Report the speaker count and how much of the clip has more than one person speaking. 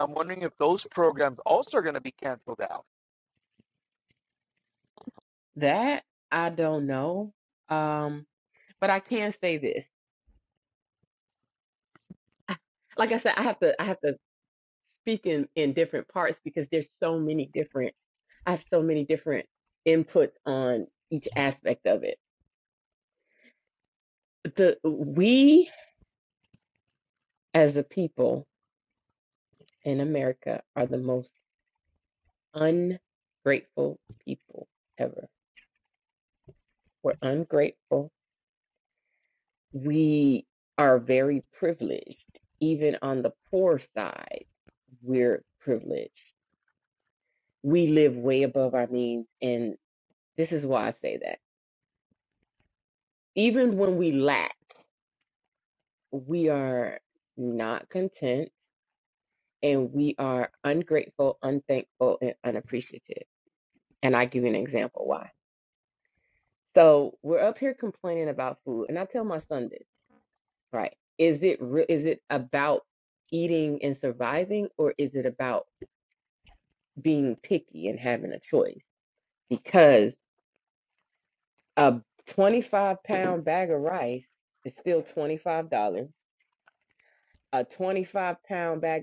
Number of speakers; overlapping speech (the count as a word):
two, no overlap